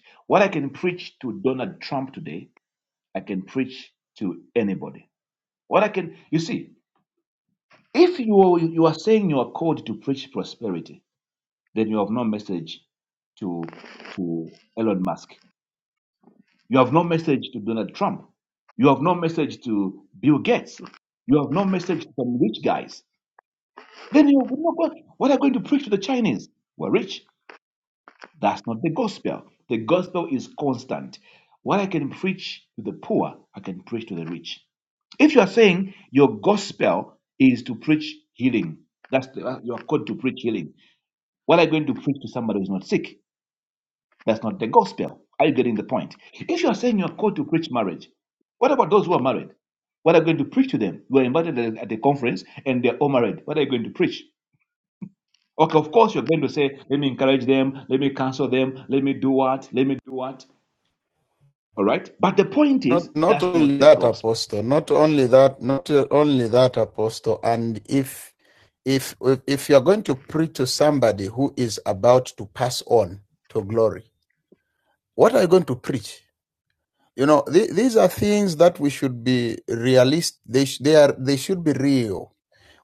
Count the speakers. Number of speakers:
2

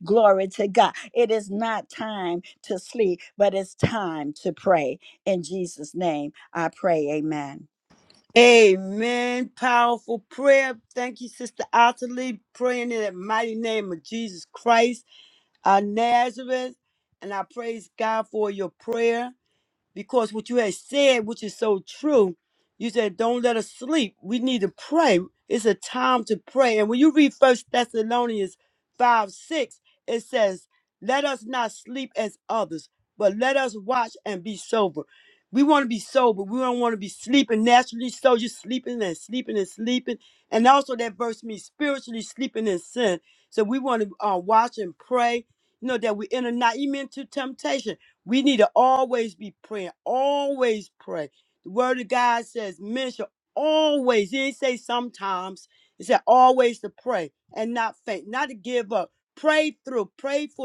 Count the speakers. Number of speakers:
2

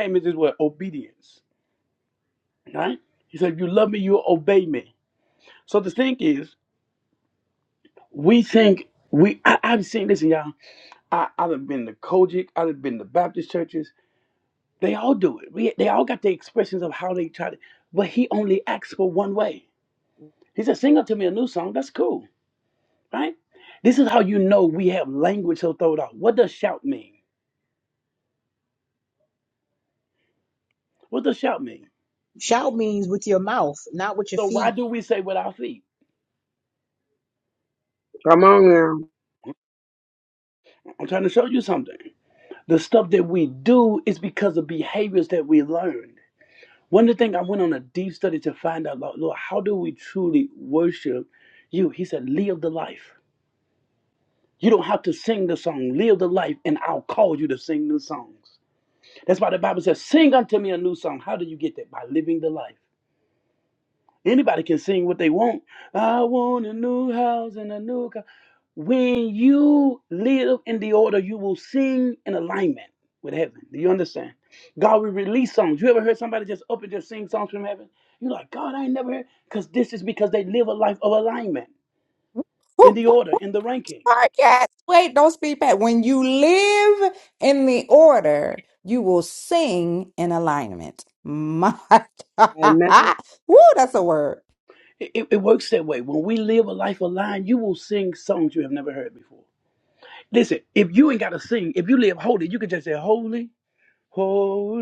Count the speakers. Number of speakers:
4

